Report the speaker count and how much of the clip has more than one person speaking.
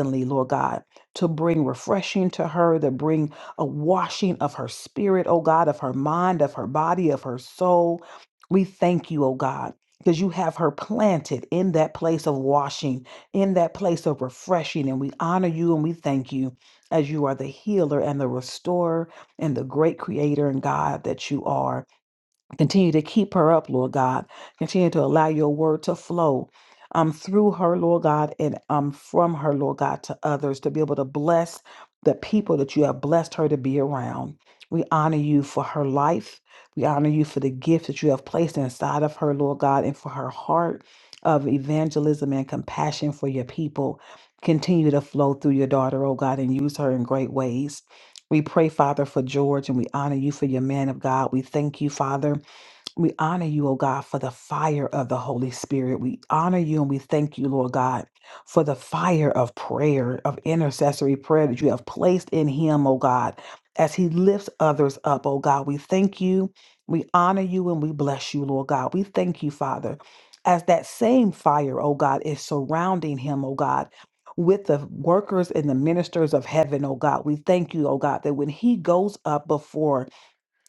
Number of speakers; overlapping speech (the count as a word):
one, no overlap